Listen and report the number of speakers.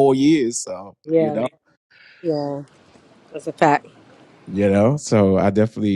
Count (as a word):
two